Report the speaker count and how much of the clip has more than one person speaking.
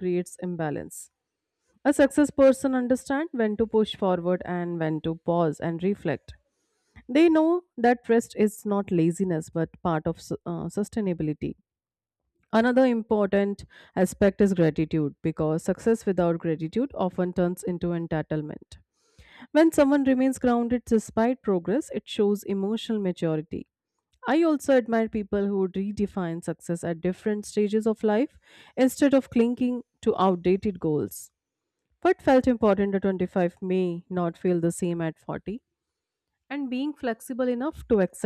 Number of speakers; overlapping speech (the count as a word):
one, no overlap